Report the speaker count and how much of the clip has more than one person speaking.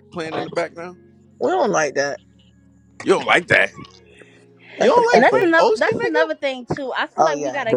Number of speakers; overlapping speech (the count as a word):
three, about 27%